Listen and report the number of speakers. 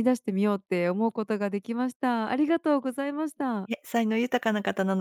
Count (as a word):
two